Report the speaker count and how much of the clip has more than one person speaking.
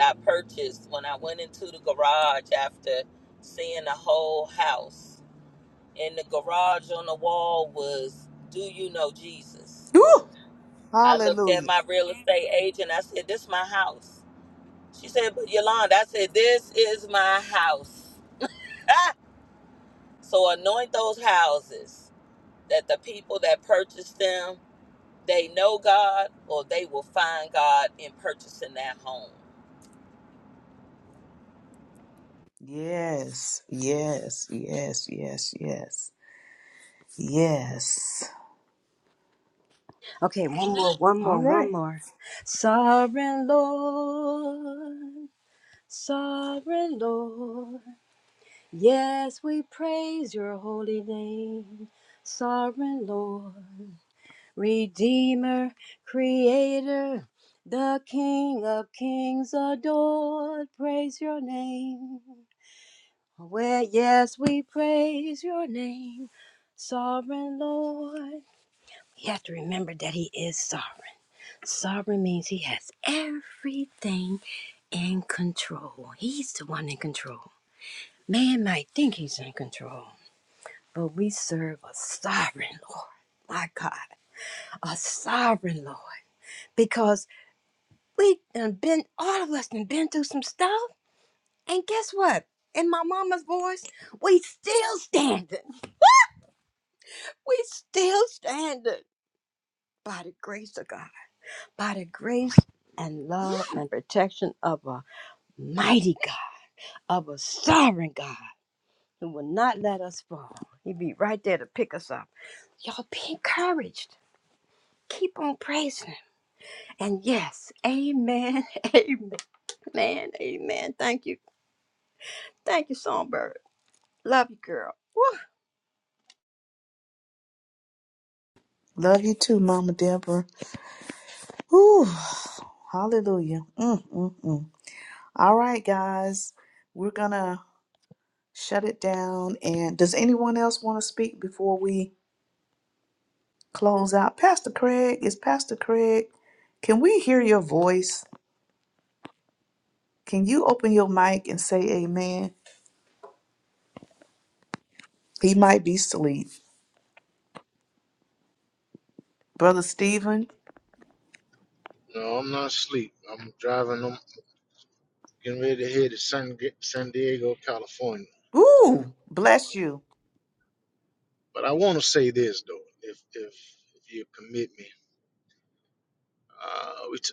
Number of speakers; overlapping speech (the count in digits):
4, about 1%